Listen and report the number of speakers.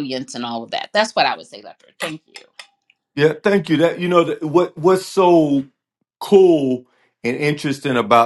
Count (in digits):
2